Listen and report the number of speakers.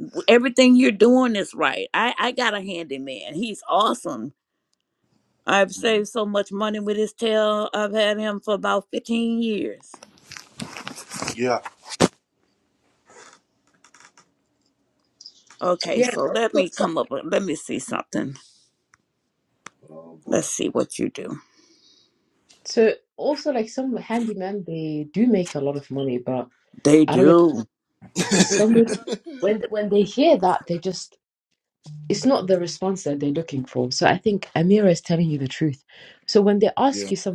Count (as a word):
three